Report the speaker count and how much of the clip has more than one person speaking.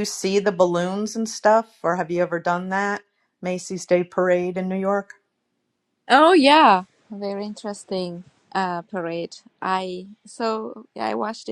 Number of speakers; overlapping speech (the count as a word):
two, no overlap